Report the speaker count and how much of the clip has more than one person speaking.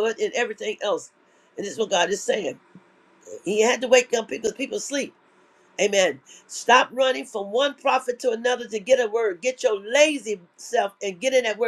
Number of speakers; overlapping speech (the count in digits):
1, no overlap